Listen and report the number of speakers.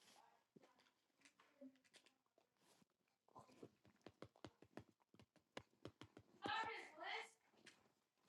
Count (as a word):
zero